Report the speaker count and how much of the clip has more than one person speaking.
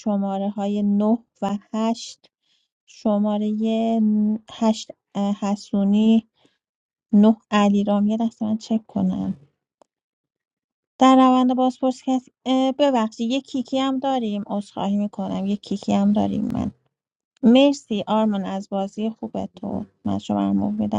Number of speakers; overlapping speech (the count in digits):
1, no overlap